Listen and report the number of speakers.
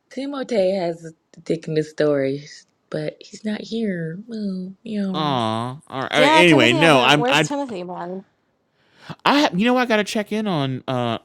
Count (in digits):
3